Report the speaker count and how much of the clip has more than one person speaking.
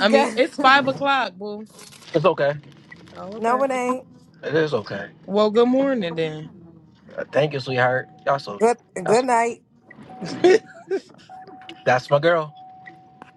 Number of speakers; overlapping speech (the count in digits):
3, about 10%